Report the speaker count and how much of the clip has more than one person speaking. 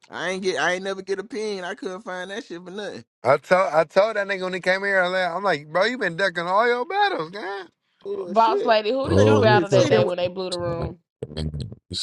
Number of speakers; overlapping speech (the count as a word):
four, about 16%